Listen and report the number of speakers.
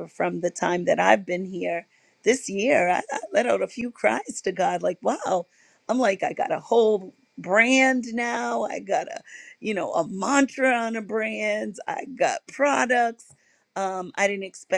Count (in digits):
1